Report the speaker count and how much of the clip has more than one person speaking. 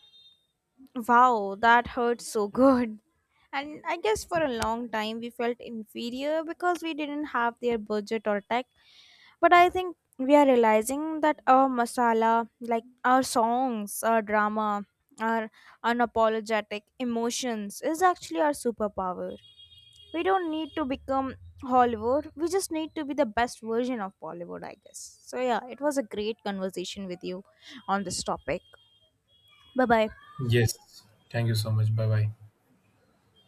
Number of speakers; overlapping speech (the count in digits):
2, no overlap